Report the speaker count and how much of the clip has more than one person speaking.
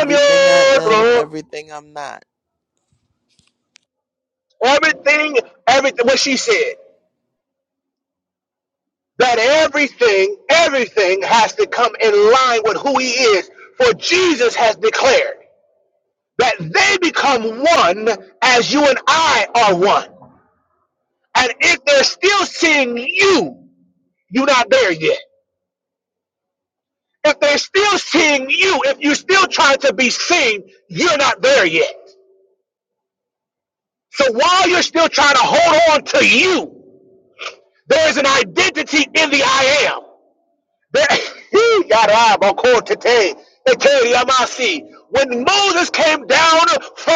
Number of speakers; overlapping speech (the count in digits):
2, about 3%